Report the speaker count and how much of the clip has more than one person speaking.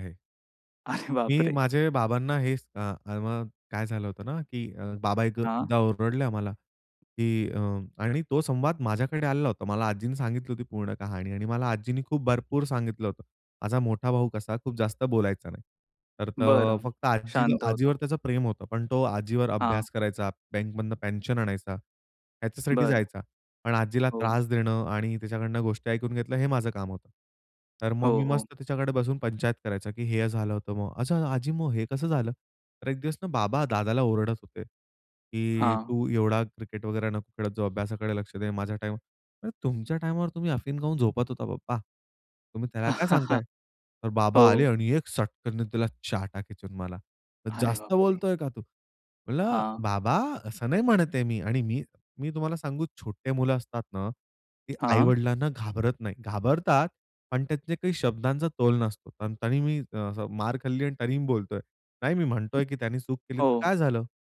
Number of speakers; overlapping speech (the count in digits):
2, about 8%